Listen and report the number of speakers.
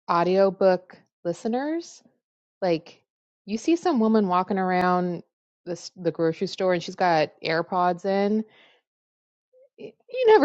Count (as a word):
one